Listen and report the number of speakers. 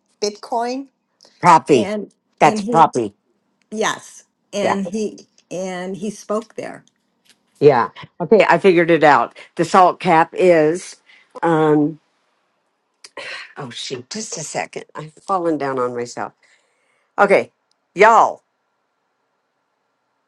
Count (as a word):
two